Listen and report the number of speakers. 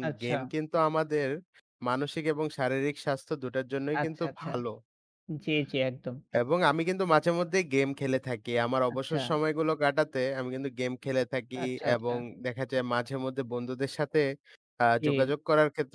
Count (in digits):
2